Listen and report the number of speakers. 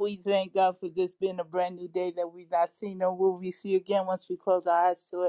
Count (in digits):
1